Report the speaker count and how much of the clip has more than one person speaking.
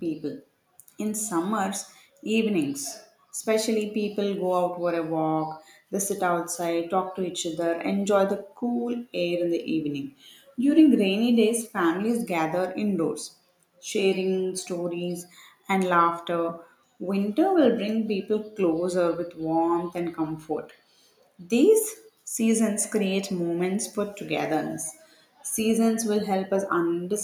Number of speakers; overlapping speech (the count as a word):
one, no overlap